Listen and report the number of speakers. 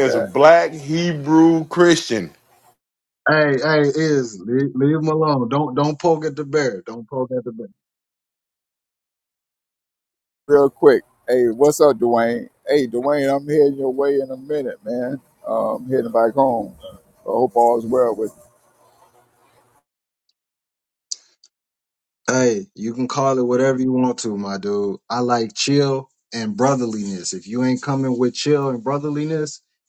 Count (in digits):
3